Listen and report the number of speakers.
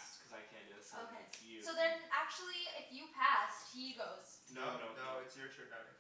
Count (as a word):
three